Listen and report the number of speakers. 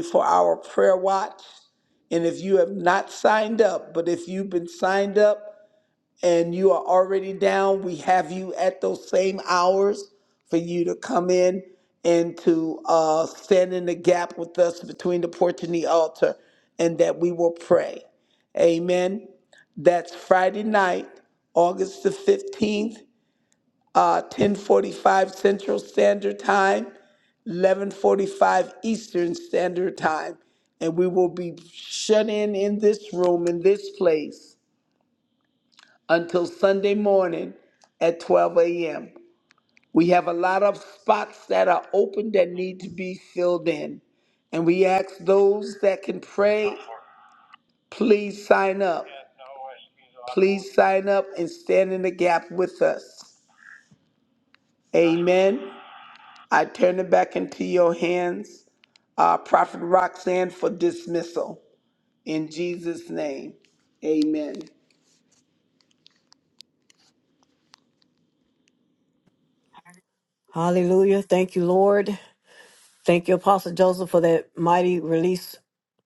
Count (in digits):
2